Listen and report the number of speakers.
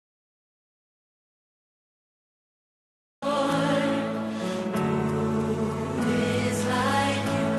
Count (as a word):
zero